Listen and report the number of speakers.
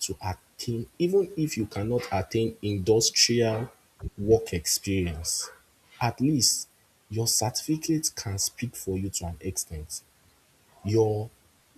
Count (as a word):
one